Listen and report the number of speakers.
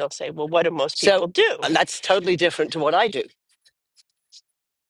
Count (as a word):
two